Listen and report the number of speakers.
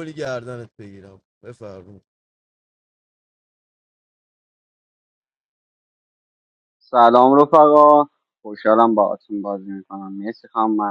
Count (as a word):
two